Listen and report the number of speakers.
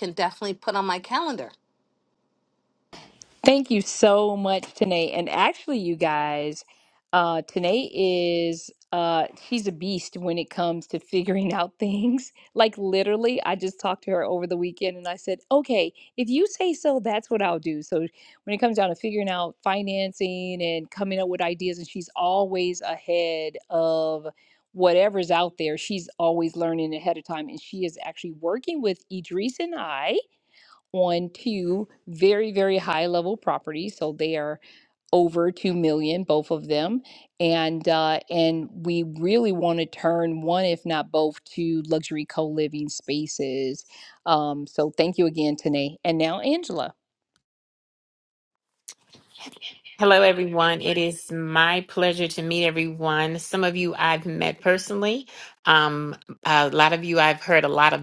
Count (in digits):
3